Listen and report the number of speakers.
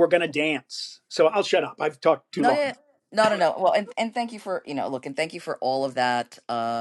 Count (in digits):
2